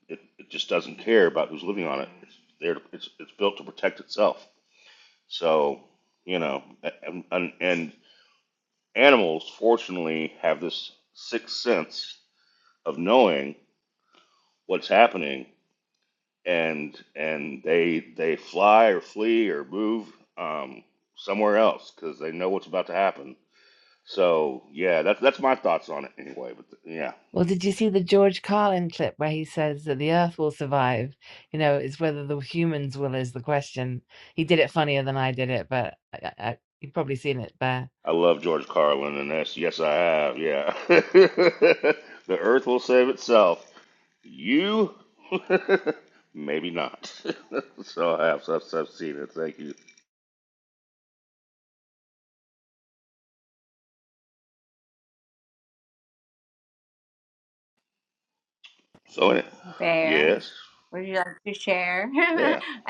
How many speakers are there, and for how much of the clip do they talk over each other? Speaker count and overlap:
three, about 1%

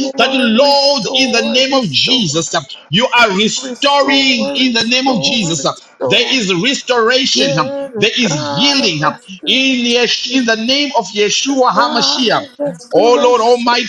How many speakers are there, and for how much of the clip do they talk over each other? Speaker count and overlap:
two, about 58%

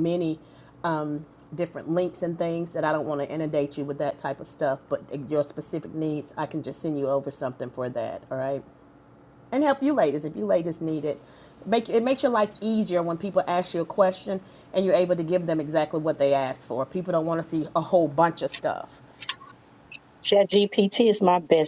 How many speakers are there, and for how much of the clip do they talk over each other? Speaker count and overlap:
two, no overlap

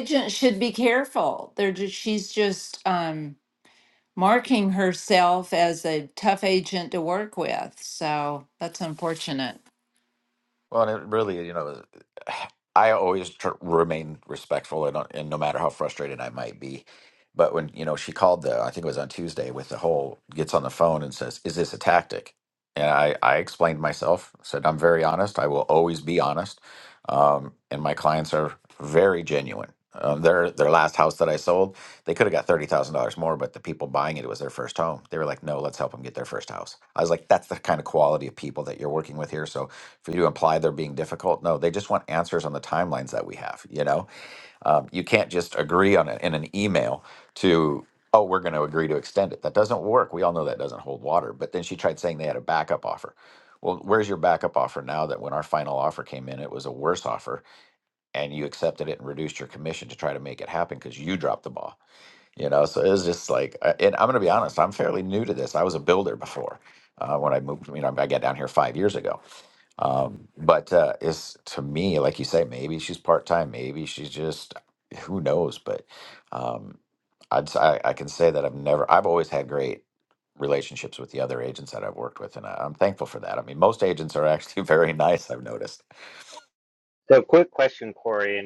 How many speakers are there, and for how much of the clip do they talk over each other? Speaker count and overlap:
three, no overlap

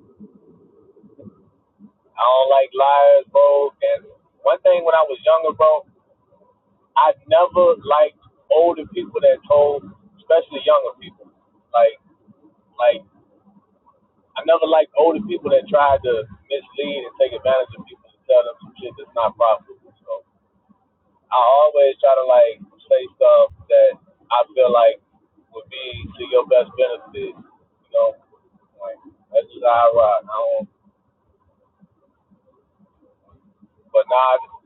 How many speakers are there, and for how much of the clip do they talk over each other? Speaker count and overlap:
one, no overlap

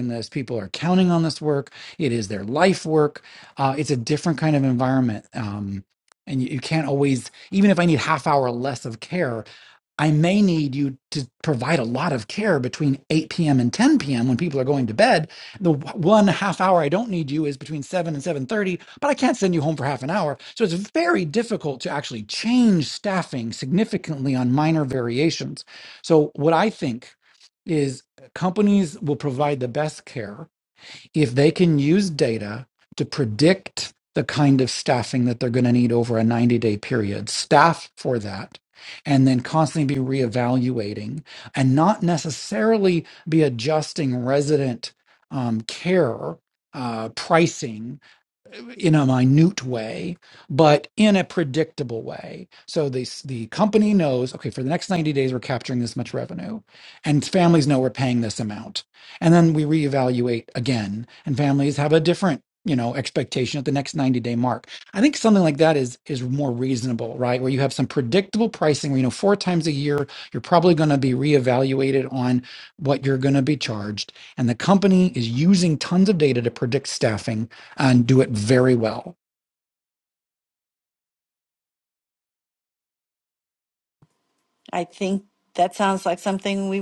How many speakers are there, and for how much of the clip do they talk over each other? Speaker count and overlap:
two, no overlap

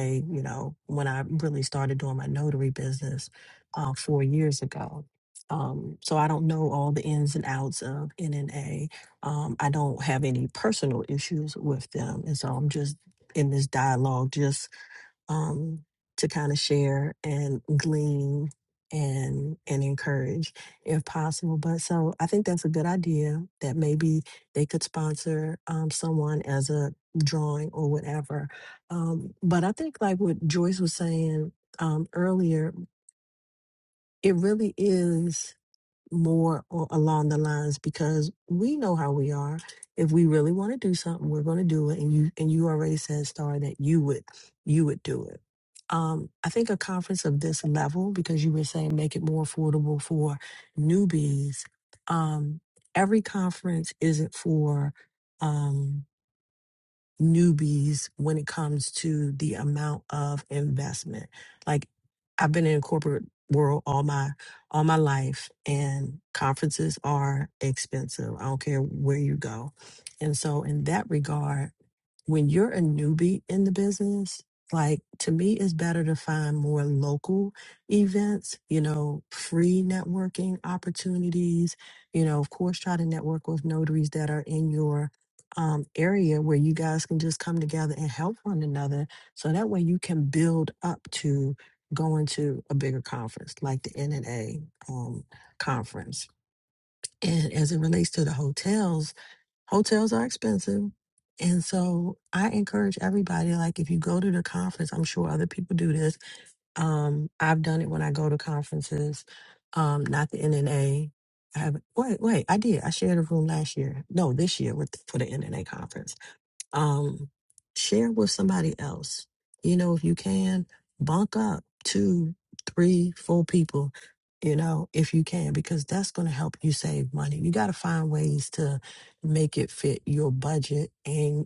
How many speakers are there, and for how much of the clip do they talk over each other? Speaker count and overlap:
one, no overlap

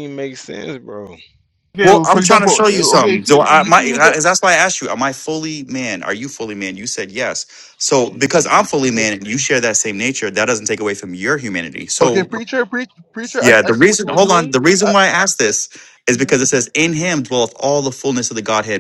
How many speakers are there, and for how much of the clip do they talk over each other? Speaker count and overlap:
three, about 24%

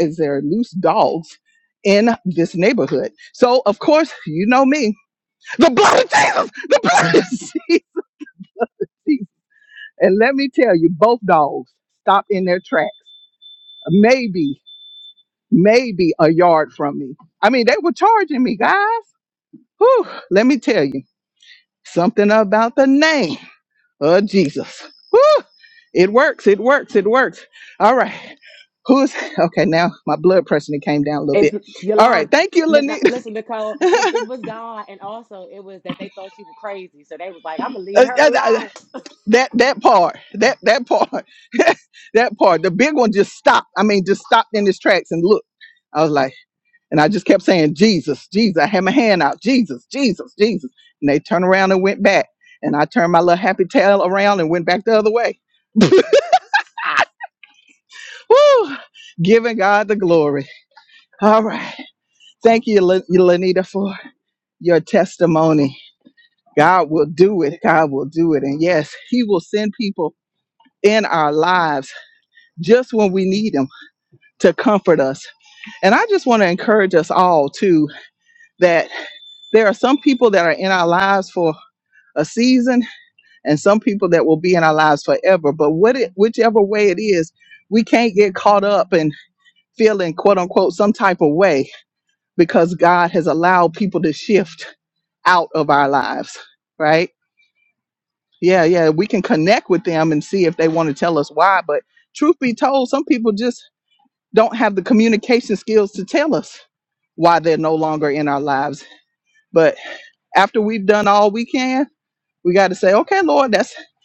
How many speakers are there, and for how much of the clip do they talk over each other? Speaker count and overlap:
two, about 2%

